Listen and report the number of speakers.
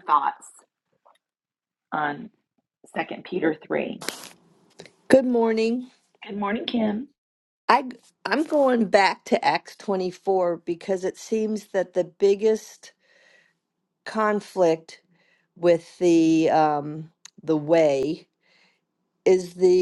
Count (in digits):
2